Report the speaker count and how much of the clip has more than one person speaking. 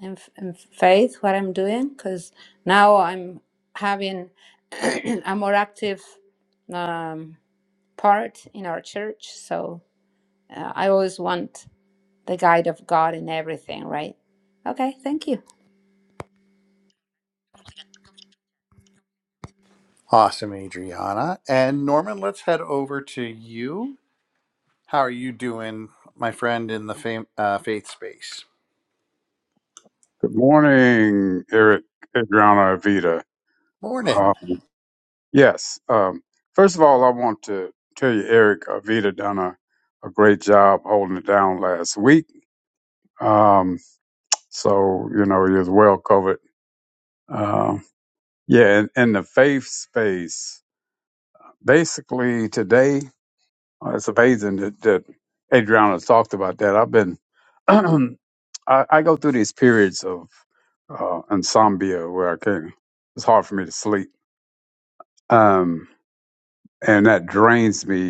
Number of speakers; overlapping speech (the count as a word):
three, under 1%